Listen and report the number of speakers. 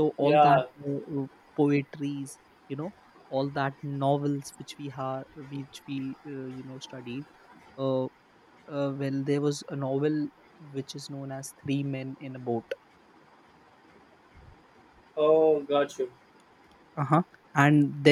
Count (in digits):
2